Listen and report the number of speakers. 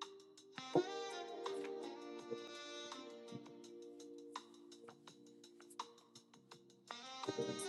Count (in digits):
0